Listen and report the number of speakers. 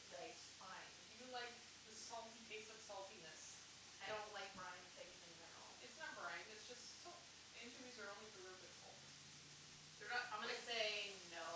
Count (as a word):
two